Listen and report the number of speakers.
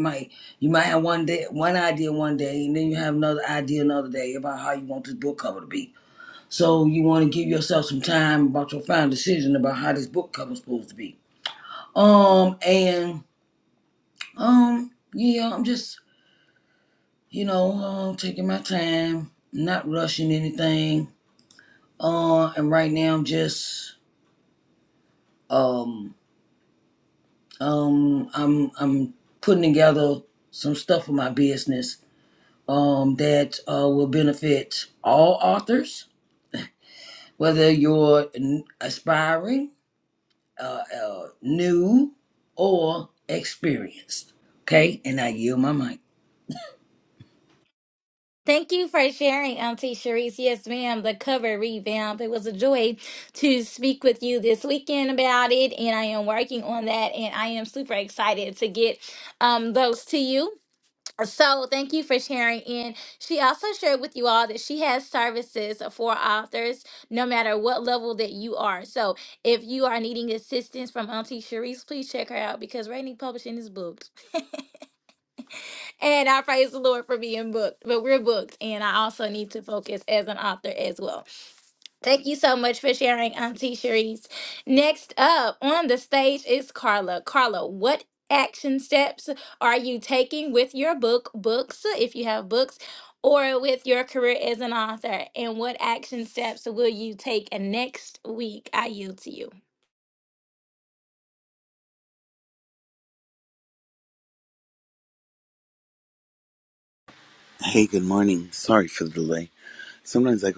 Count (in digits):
3